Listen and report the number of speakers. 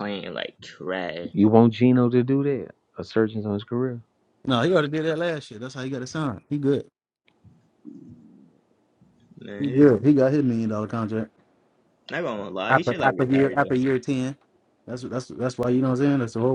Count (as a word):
three